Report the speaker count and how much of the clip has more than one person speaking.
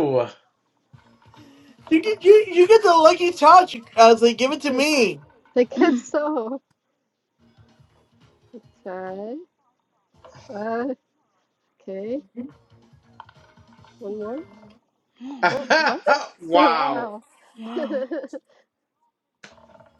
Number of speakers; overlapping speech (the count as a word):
four, about 6%